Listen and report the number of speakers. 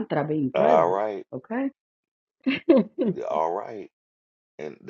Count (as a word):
two